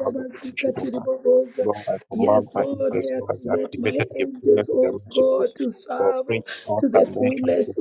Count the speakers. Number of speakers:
2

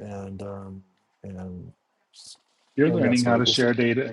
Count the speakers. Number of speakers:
2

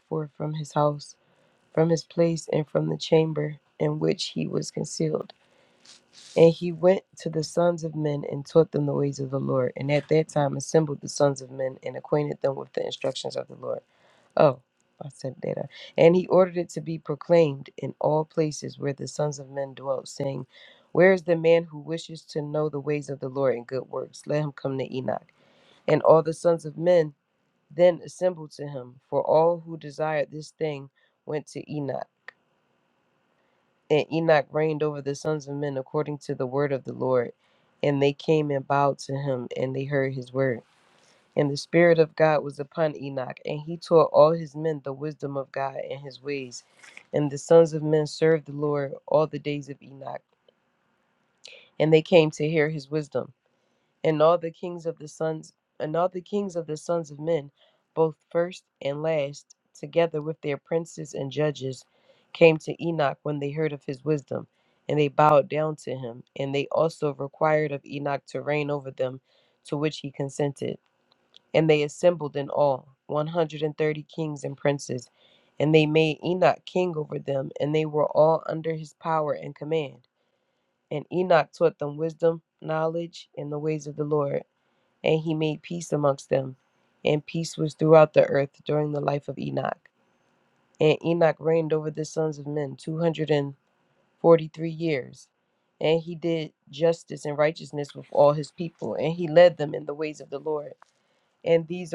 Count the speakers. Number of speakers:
1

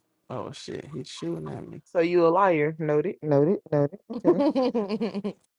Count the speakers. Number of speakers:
3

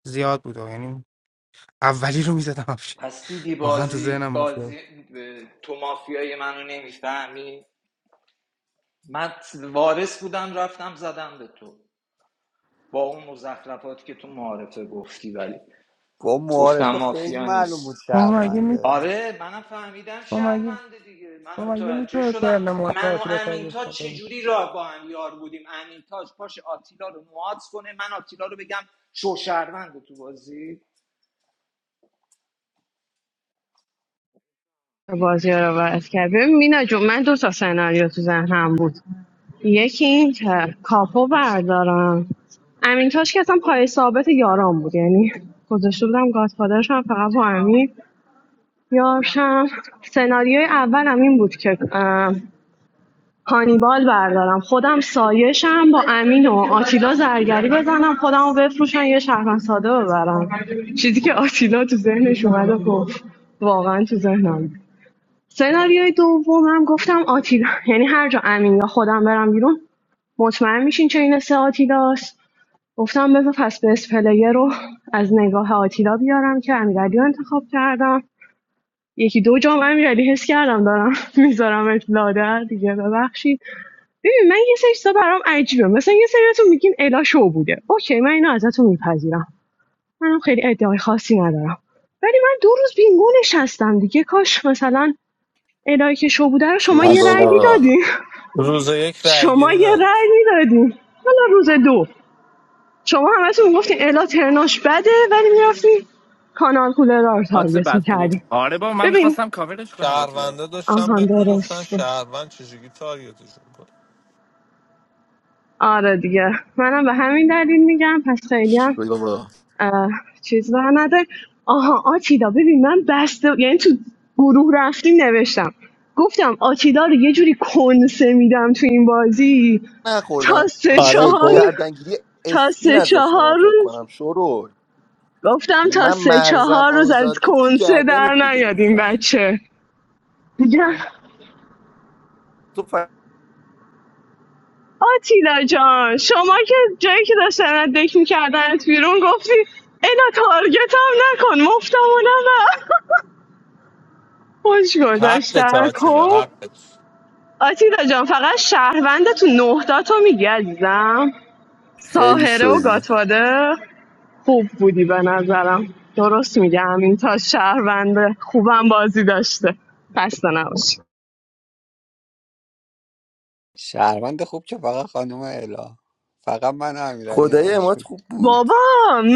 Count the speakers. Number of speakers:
7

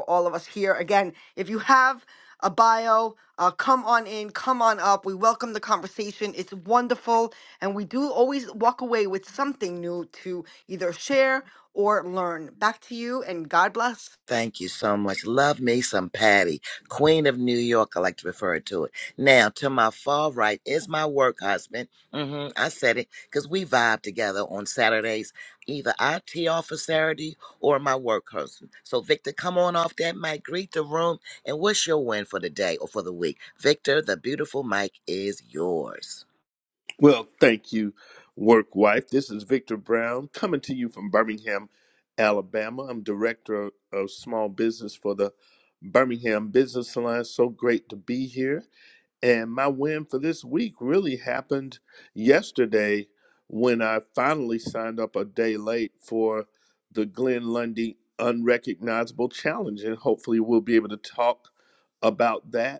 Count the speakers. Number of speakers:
3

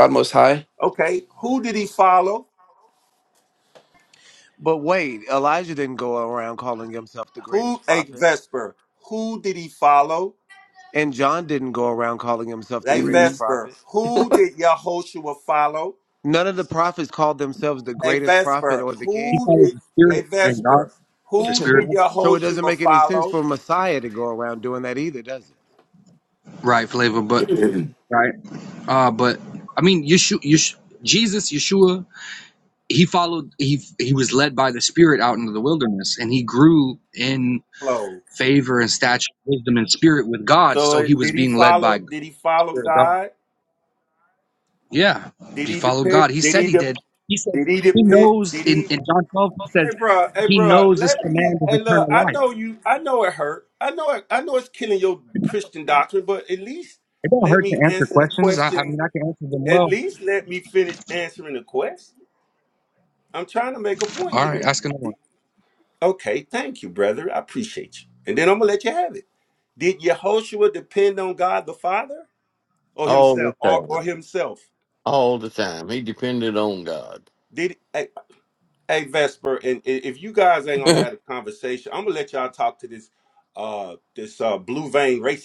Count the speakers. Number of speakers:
5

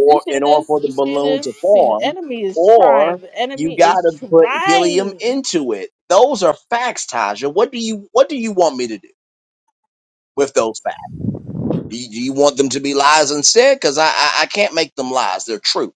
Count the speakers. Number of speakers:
2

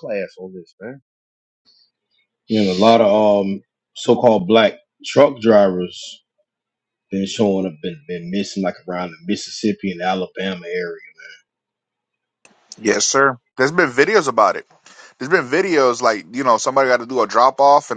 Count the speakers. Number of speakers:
3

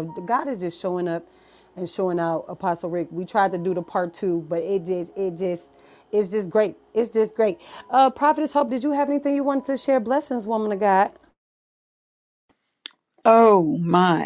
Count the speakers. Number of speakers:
2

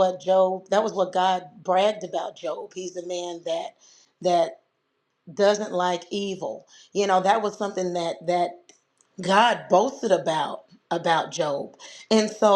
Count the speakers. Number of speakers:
1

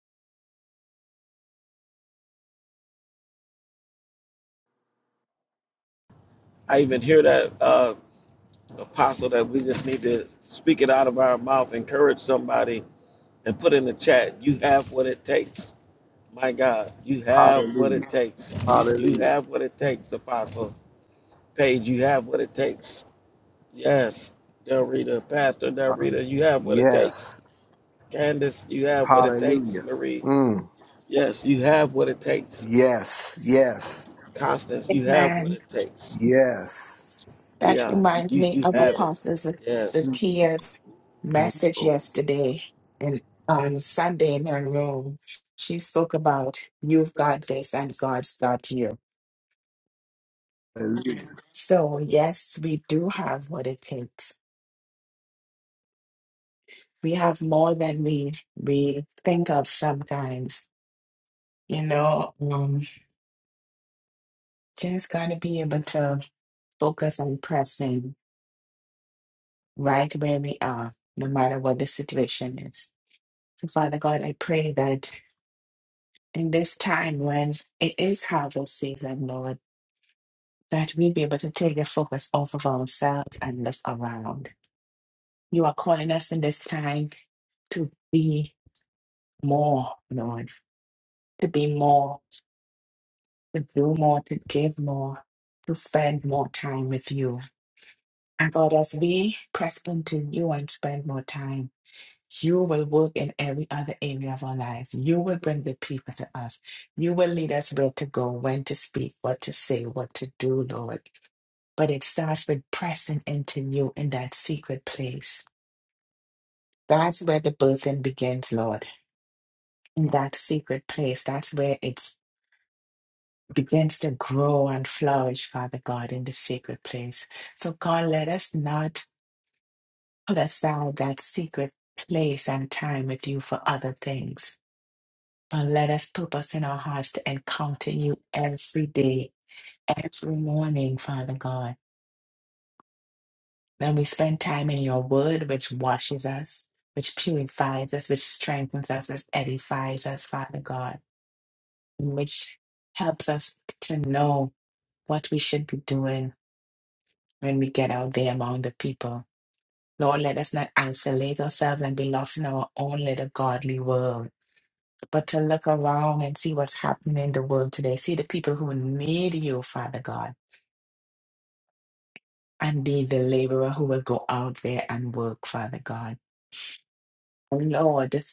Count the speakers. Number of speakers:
3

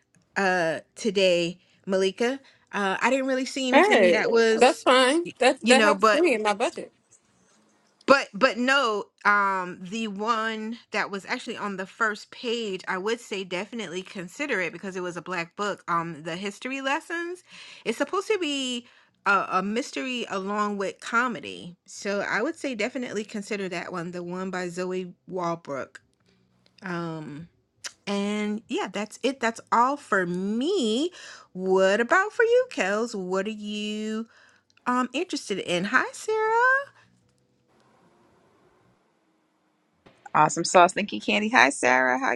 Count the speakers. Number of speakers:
3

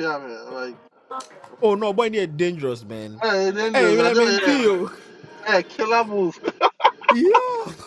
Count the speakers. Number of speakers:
2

